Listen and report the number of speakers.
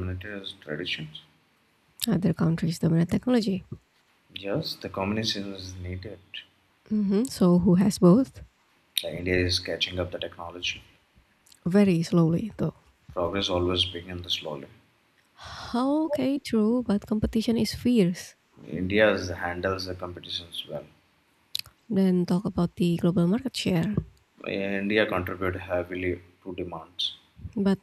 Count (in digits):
2